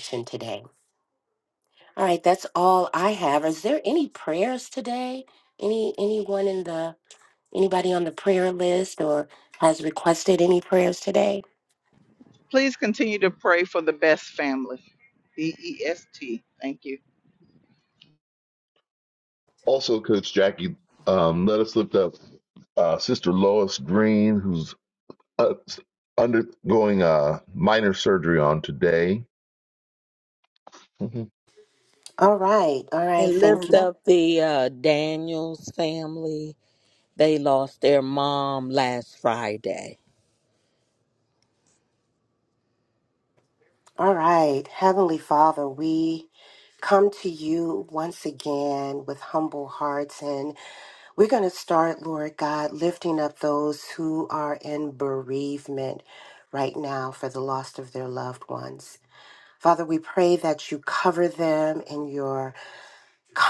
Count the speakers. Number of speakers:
four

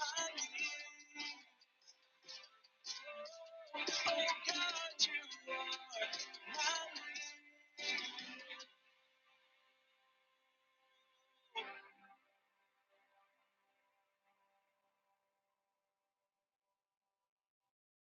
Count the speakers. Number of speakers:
zero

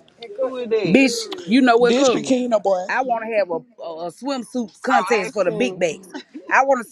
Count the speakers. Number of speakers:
three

